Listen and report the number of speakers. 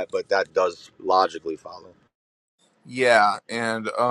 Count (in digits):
2